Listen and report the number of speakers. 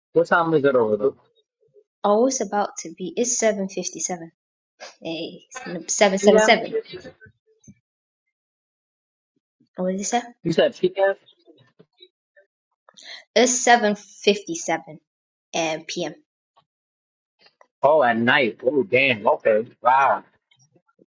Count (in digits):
2